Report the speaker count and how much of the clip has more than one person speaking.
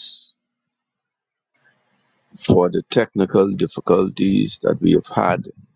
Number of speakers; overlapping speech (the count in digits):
1, no overlap